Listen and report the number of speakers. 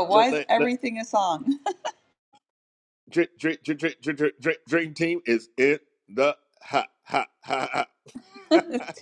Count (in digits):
2